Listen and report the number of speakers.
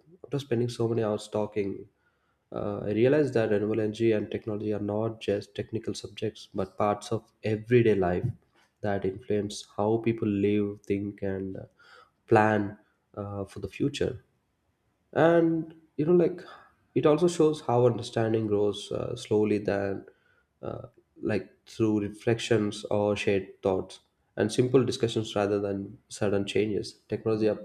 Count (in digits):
1